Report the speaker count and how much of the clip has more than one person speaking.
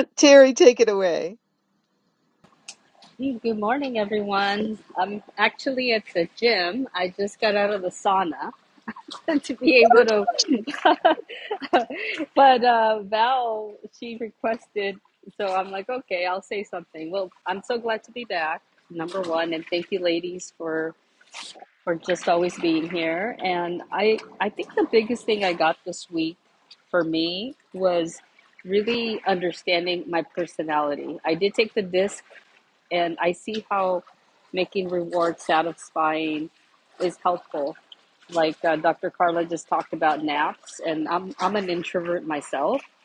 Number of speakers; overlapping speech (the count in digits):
2, no overlap